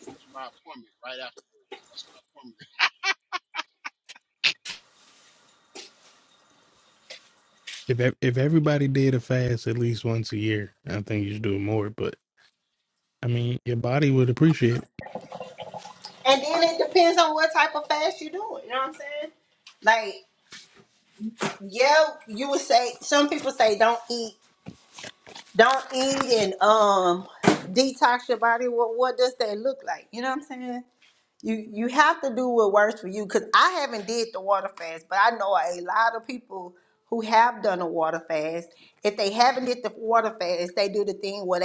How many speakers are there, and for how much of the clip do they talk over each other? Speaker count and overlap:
3, no overlap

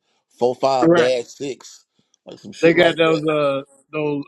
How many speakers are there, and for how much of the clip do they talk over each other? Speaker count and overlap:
2, about 21%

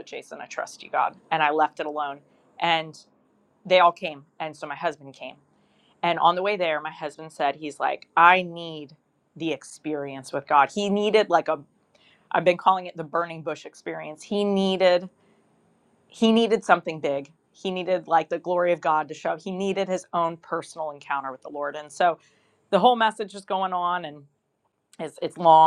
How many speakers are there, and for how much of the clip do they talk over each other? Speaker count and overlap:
1, no overlap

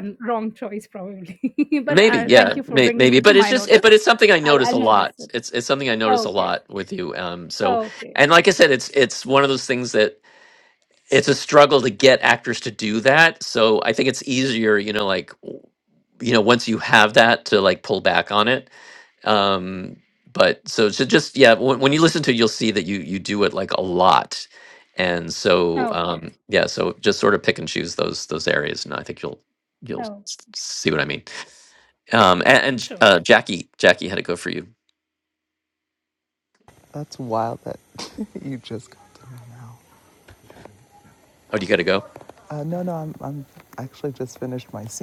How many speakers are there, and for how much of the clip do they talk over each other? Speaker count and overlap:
3, about 10%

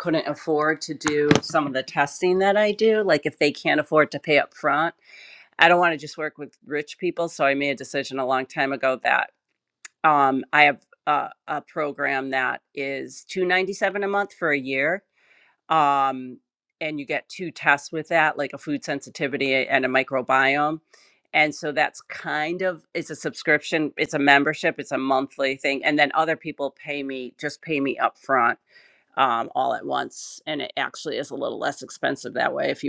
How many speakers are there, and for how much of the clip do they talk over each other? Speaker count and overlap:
1, no overlap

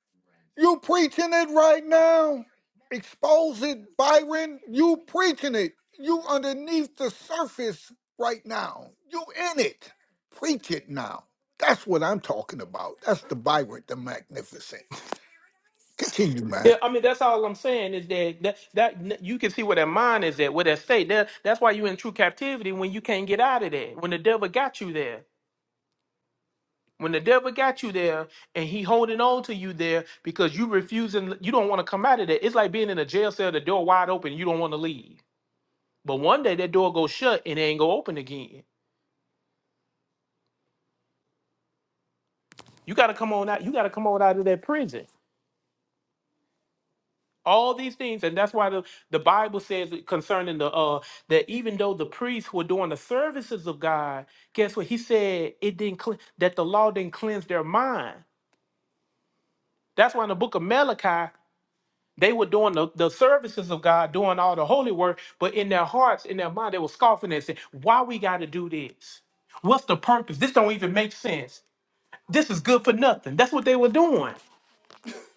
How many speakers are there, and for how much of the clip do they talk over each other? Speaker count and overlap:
2, under 1%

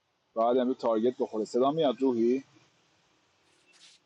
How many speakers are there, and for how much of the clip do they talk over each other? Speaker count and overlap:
1, no overlap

